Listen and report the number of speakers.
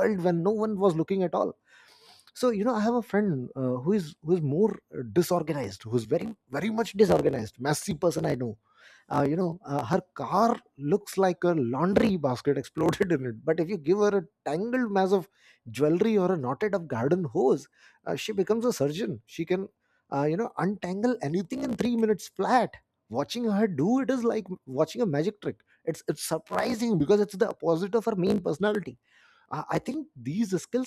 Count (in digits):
1